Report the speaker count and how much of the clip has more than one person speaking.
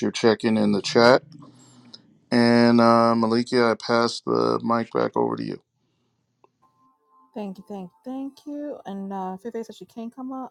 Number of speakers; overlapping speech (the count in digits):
2, no overlap